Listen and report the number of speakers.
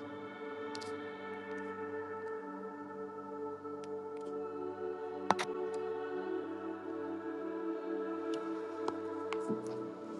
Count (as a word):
zero